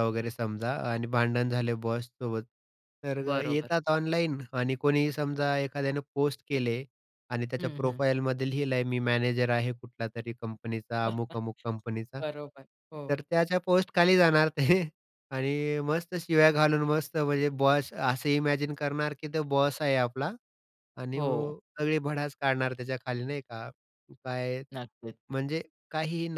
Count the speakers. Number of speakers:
2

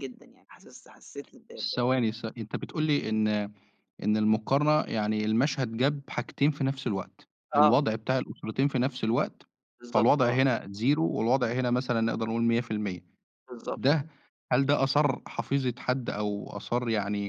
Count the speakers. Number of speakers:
2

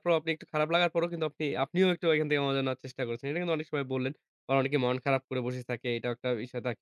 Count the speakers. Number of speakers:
1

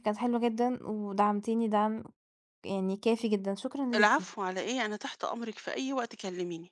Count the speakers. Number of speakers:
2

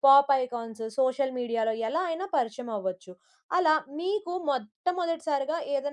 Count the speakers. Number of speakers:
1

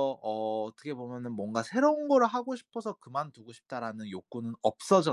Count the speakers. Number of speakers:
1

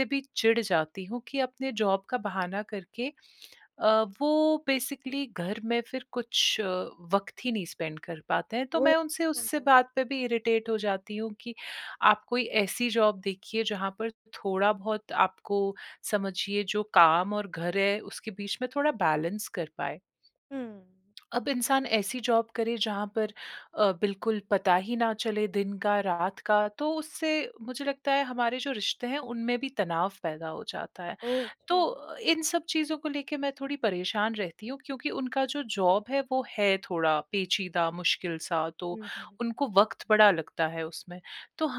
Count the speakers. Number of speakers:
2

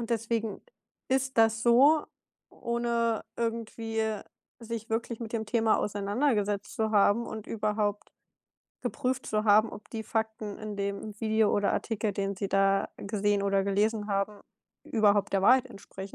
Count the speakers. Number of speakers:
1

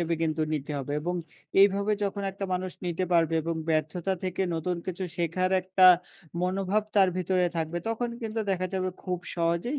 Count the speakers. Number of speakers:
1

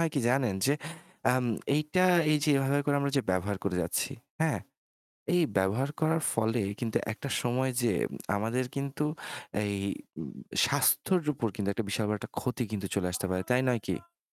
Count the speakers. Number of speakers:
1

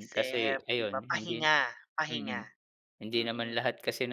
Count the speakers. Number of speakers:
2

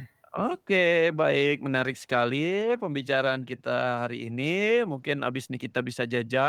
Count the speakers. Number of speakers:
1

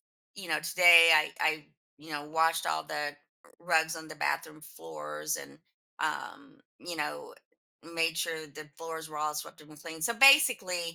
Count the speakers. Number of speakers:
1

